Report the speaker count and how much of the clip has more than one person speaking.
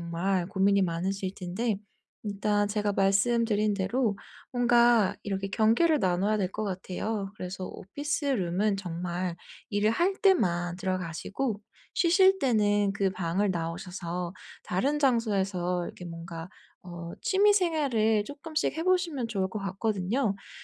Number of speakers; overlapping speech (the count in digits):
1, no overlap